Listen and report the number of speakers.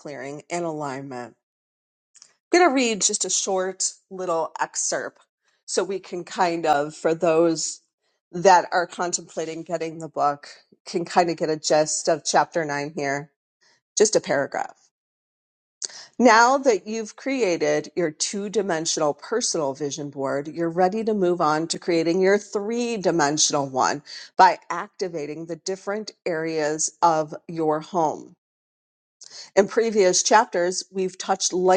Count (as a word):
one